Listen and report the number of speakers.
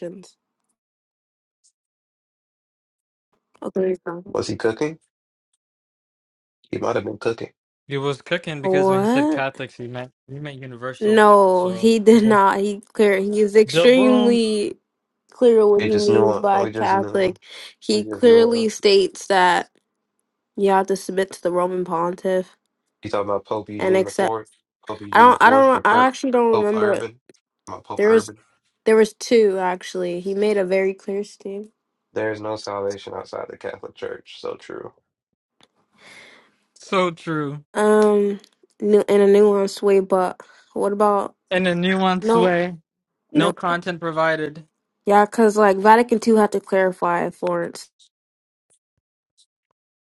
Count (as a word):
three